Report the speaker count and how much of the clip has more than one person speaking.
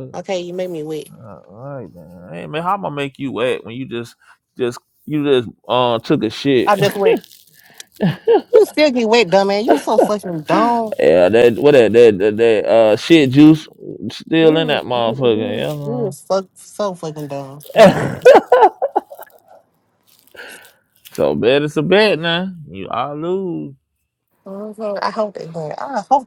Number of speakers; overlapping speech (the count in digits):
2, about 8%